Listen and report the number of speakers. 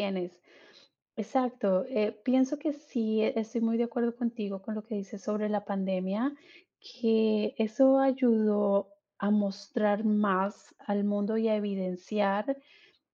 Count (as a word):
one